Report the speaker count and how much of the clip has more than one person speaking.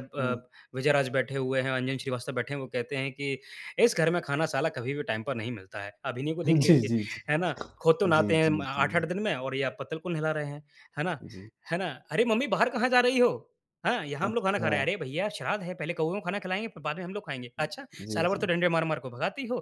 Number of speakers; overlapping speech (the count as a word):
two, about 13%